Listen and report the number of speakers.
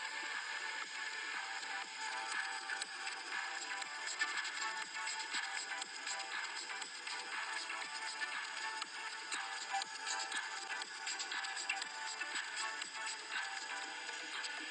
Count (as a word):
zero